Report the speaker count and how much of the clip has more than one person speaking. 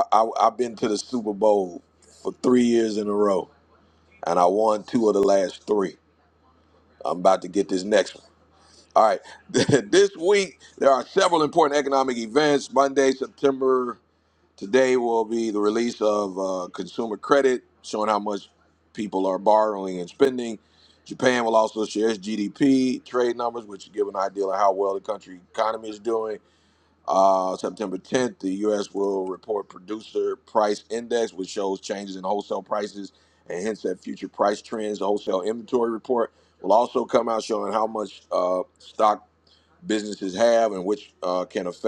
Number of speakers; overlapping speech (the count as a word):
one, no overlap